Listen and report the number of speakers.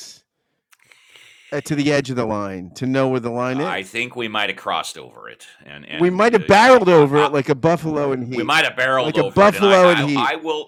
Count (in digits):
2